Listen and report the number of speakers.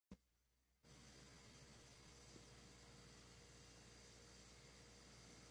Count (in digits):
0